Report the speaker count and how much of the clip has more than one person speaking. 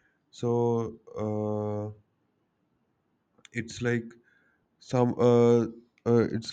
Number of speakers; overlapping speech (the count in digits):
1, no overlap